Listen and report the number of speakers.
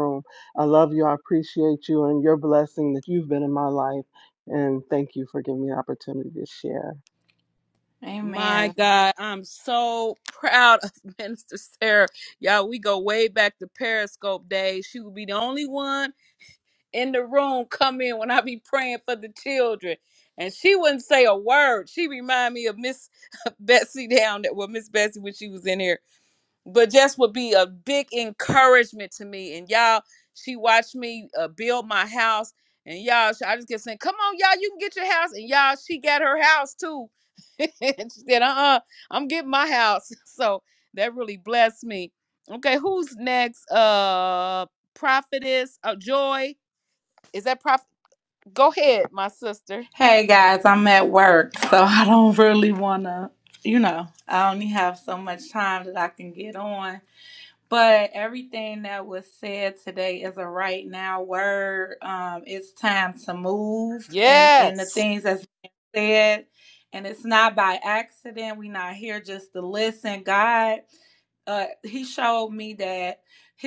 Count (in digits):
3